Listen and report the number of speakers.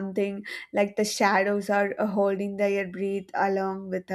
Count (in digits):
1